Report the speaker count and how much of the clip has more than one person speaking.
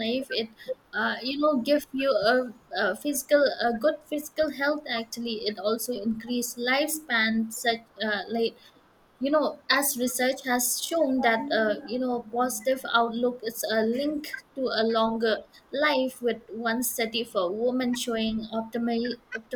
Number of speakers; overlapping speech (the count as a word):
one, no overlap